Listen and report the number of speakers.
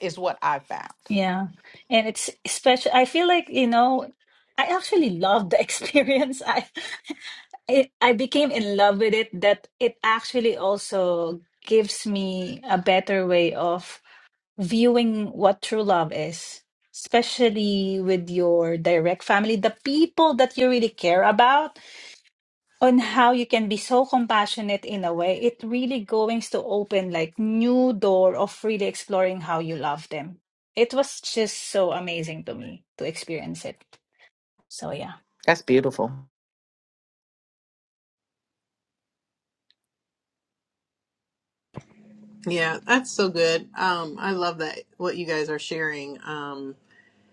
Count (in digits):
3